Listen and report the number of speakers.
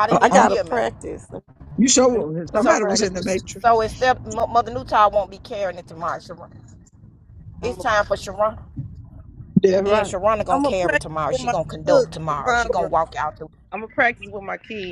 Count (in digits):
3